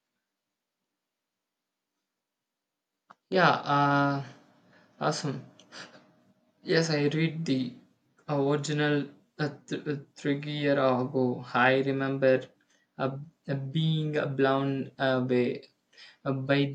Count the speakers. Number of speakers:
one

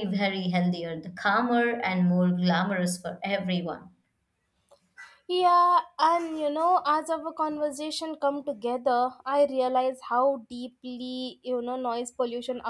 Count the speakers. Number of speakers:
two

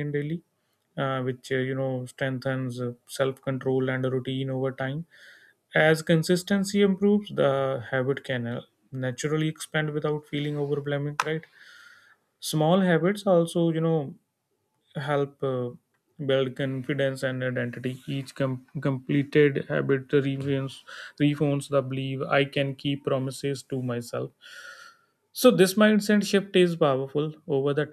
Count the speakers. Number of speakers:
one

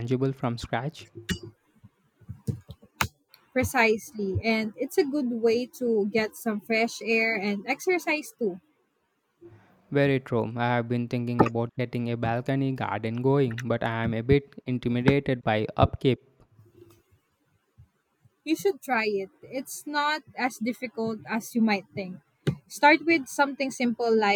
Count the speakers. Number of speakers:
two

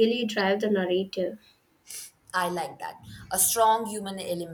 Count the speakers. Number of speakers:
two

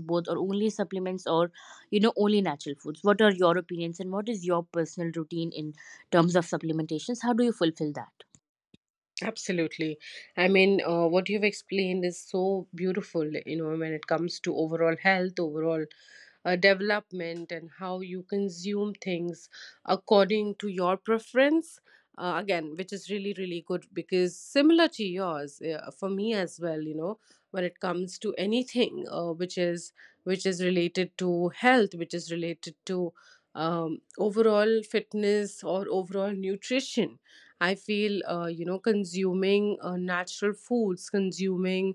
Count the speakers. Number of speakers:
two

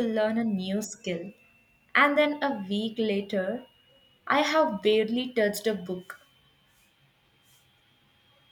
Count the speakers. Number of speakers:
one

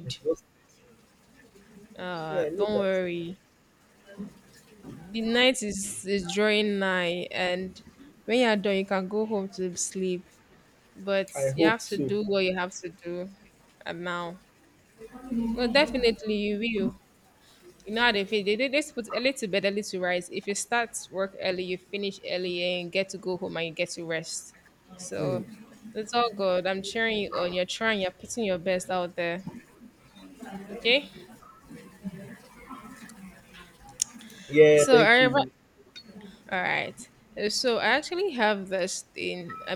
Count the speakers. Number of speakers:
two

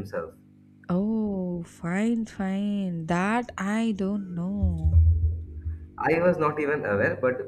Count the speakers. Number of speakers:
two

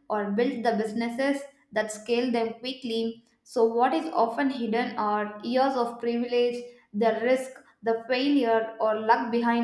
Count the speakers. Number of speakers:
one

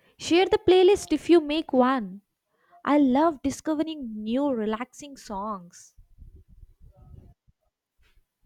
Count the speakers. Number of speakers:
one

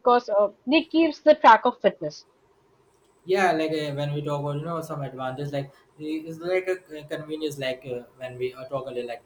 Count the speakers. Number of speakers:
two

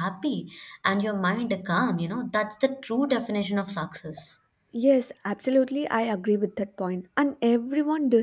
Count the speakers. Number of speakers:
two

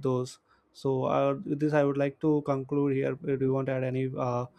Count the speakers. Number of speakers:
one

